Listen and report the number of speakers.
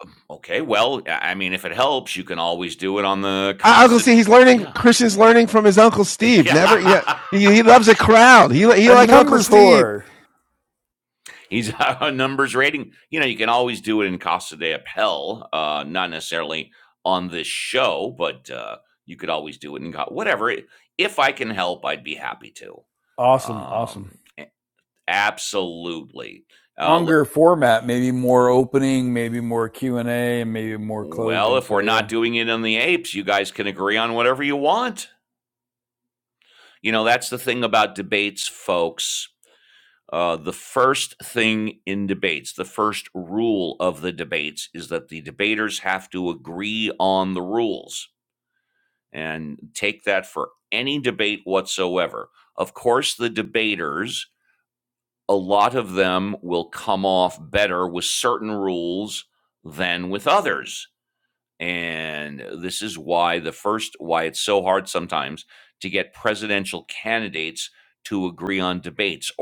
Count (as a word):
three